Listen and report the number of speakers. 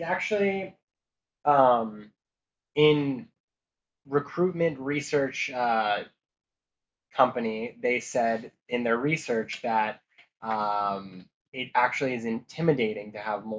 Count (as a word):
one